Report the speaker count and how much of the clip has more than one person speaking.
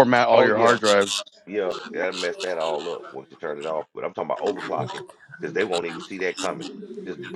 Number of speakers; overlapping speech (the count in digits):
2, about 7%